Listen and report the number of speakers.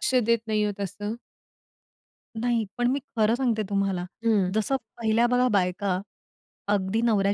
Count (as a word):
two